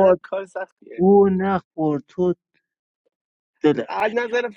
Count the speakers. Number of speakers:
2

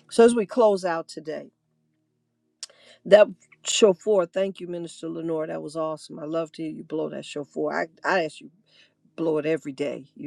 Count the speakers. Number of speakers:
1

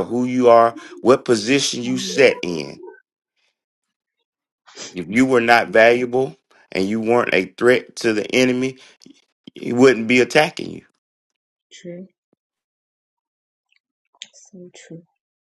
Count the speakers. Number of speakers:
2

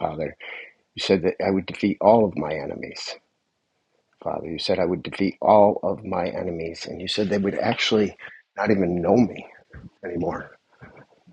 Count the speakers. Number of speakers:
1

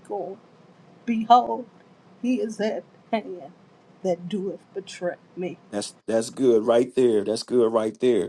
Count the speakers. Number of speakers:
2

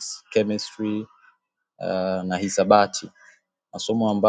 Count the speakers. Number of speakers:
1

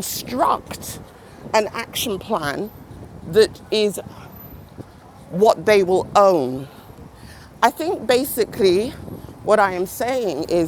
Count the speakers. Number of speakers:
1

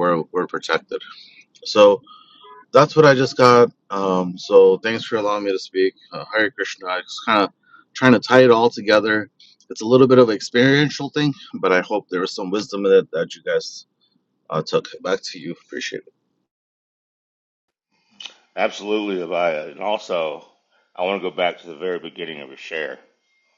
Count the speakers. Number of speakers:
2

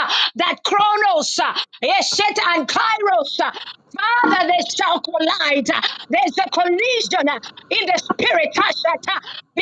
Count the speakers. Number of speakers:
1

